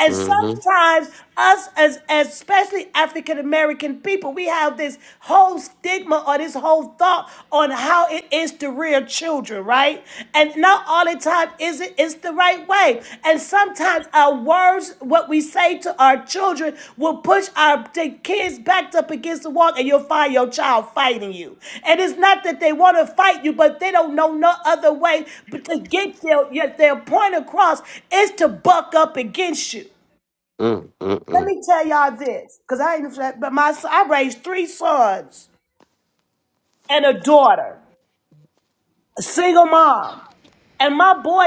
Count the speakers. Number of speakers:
2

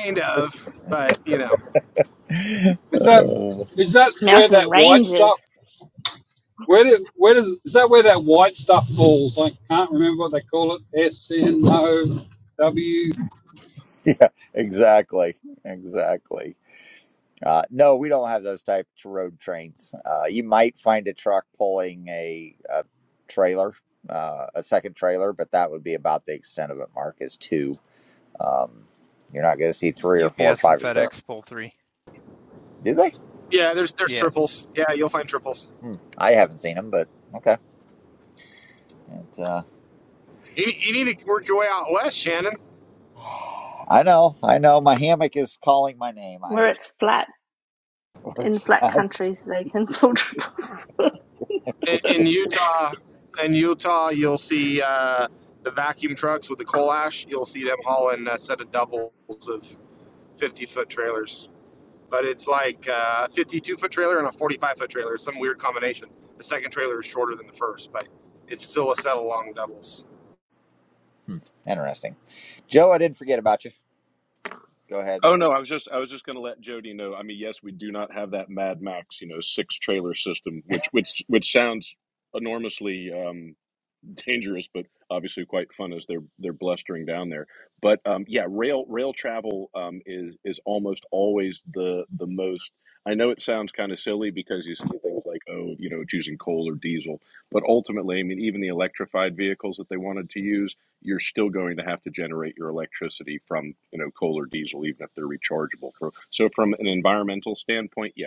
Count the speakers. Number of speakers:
6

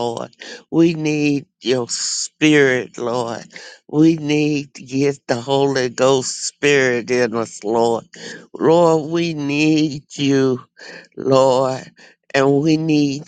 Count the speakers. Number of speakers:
1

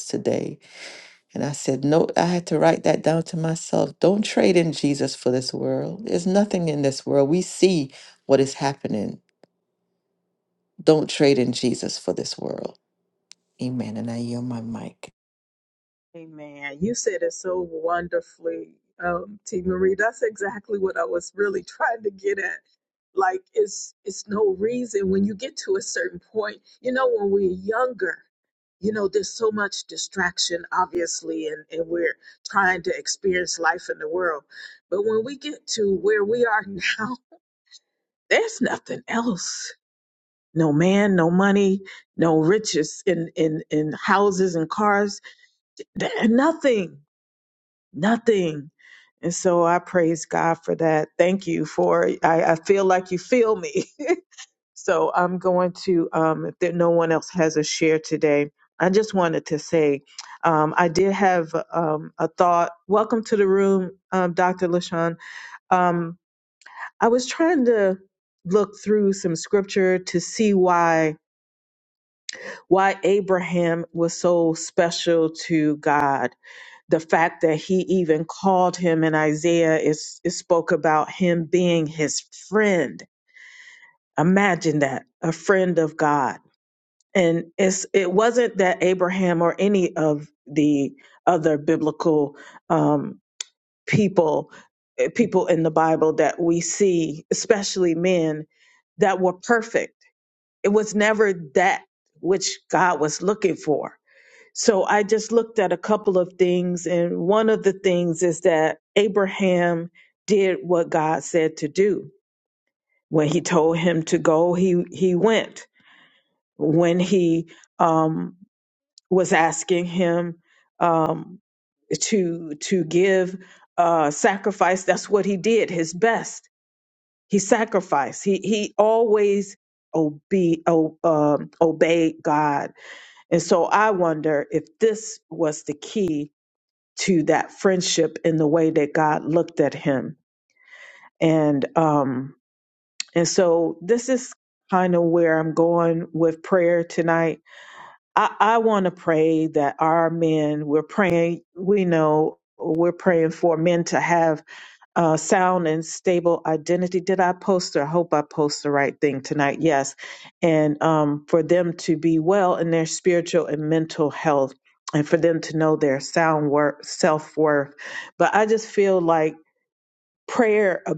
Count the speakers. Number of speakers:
2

